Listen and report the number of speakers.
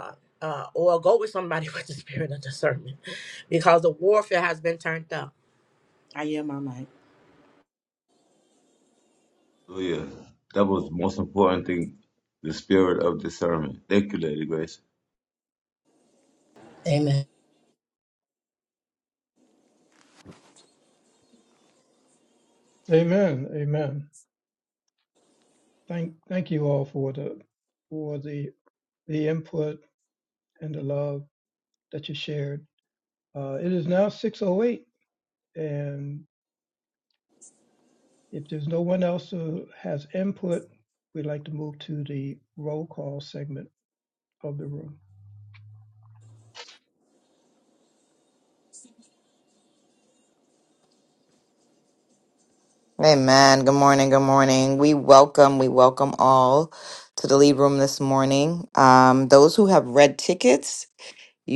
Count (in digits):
4